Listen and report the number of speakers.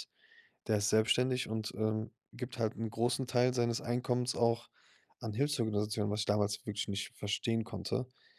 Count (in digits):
1